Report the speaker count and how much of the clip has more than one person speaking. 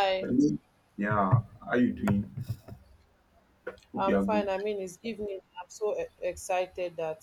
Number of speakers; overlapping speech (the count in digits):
2, about 8%